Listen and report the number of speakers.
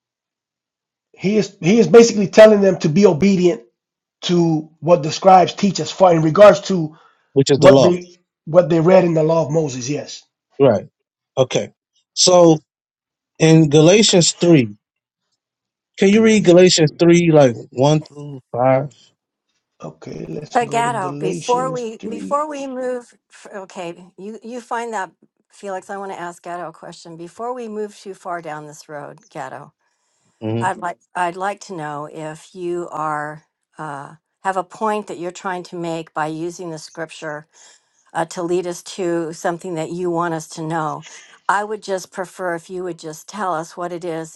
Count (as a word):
three